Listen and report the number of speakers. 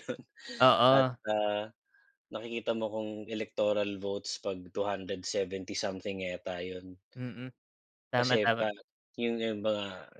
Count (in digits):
2